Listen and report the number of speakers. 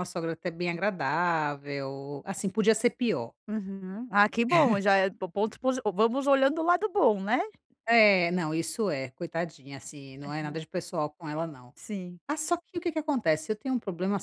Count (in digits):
2